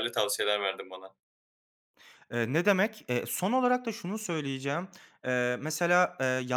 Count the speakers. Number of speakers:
2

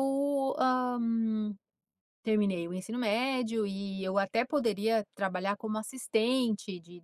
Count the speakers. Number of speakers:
1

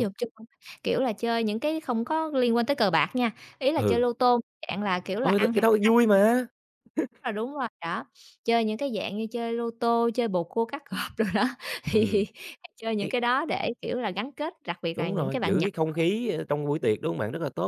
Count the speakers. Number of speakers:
2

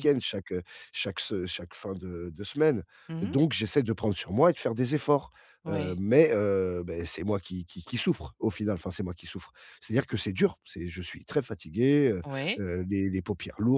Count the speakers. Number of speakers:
2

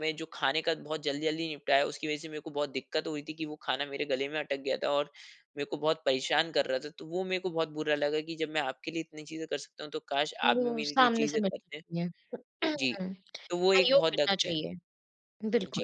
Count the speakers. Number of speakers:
2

